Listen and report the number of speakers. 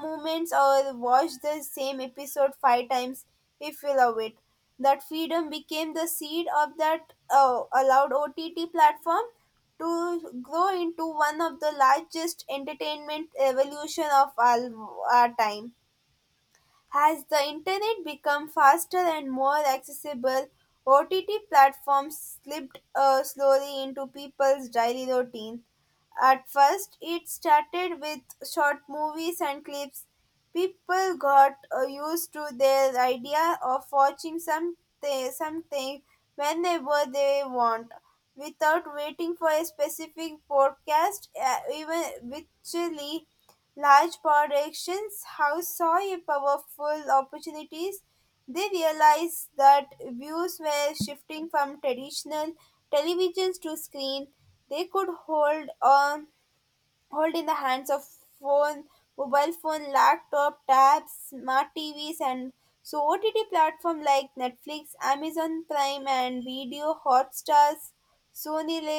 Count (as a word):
one